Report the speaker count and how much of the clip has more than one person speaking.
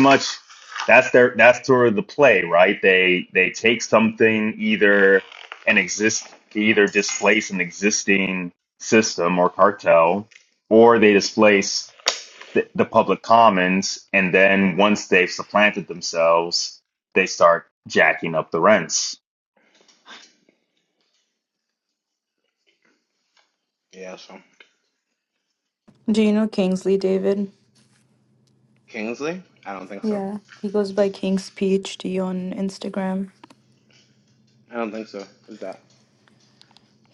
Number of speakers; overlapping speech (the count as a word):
three, about 1%